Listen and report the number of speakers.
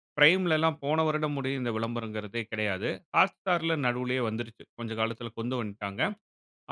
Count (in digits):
1